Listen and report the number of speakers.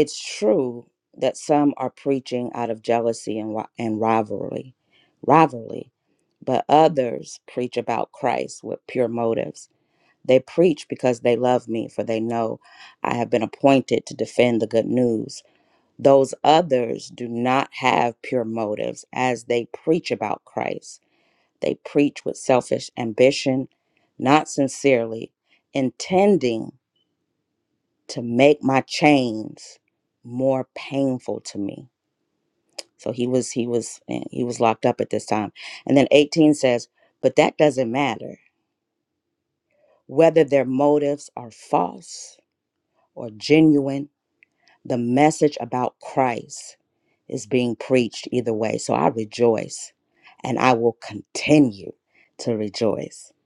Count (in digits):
1